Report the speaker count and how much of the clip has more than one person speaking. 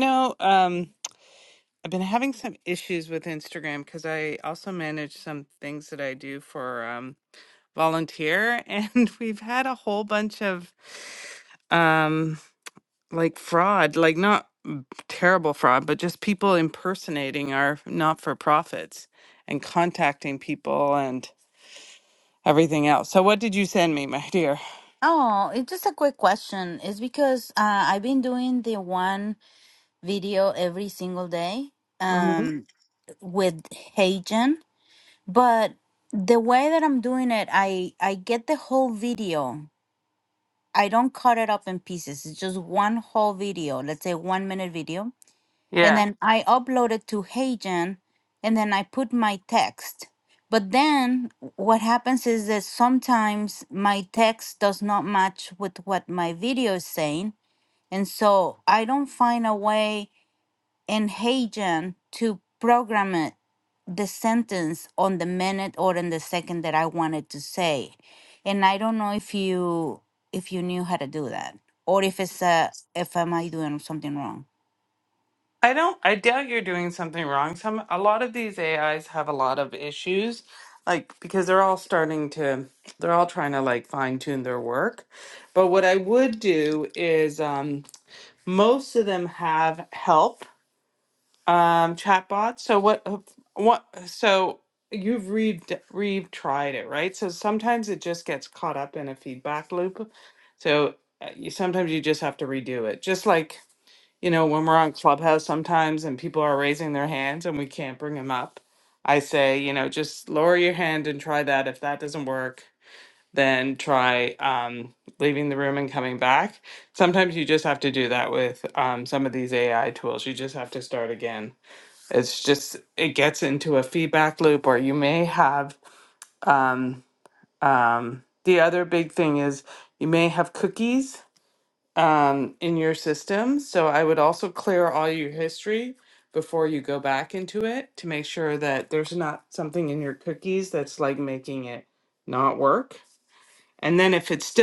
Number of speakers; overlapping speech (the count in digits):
2, under 1%